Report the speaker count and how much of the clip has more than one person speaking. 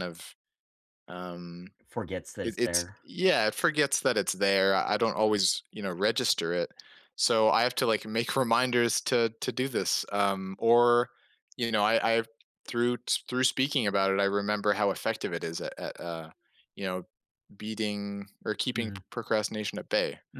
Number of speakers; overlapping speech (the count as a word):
two, about 3%